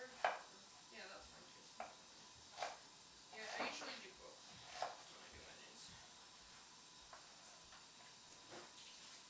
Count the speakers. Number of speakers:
one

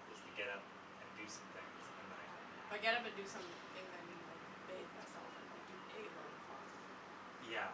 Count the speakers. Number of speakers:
two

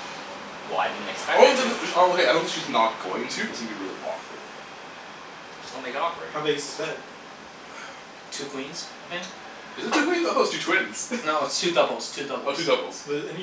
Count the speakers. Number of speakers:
four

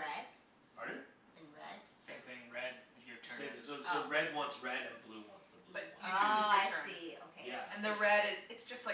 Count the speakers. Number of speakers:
four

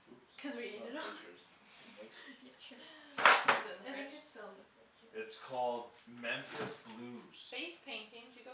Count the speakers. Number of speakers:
three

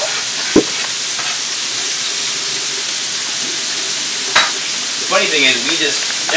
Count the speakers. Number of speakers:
one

